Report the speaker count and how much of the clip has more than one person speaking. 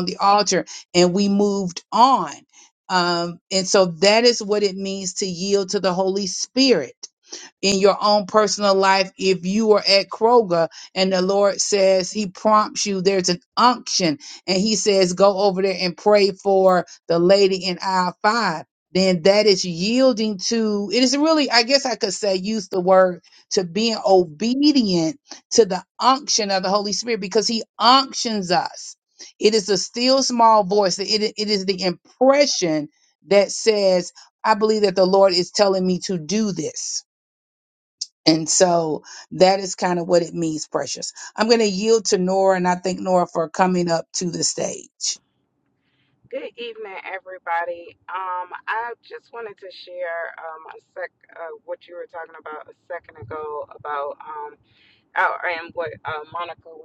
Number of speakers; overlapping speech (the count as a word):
two, no overlap